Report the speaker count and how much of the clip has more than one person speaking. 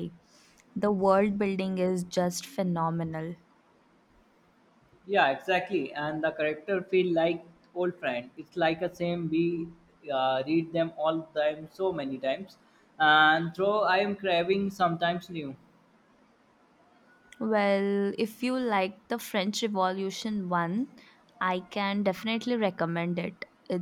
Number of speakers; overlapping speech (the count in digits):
2, no overlap